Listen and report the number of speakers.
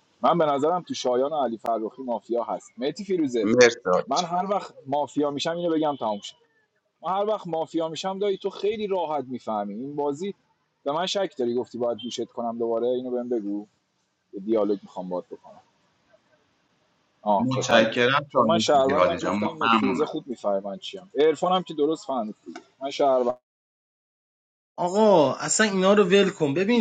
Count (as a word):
three